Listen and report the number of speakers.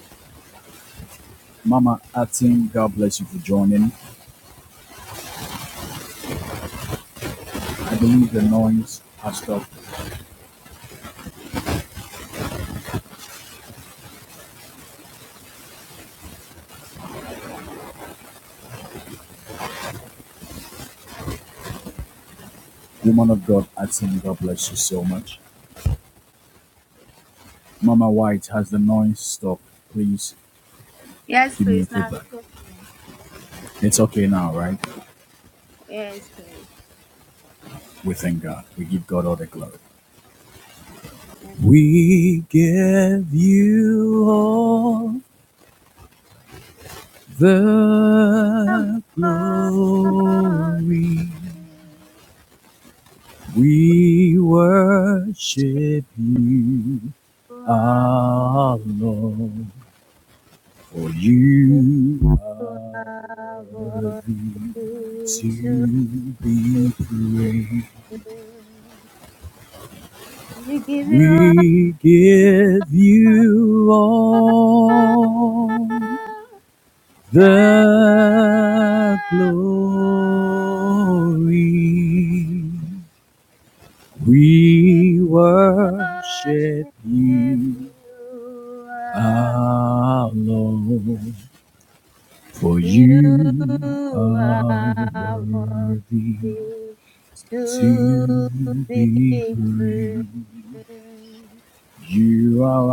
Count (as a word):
two